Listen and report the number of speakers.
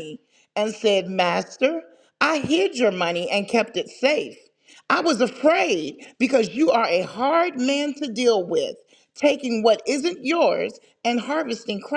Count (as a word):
one